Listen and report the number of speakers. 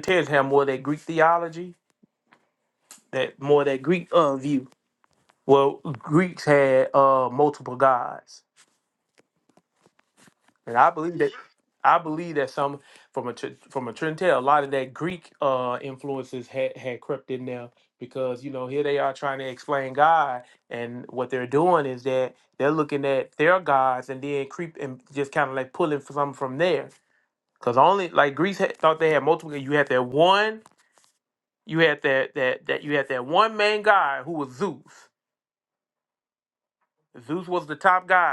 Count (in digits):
1